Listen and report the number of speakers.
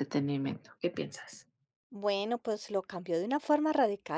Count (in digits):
2